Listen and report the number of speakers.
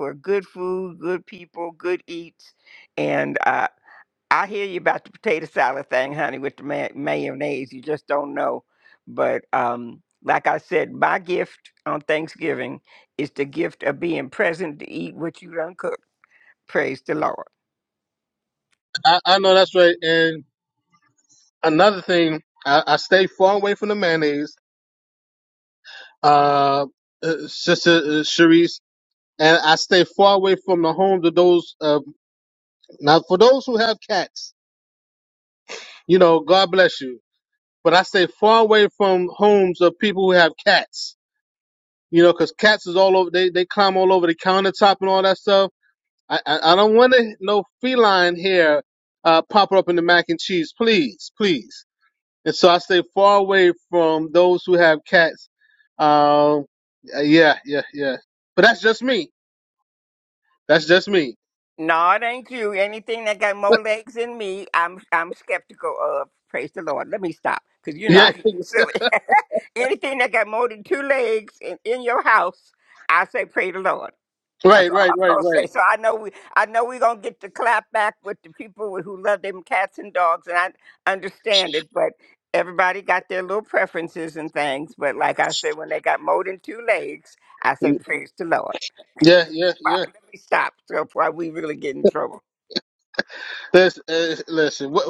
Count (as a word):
two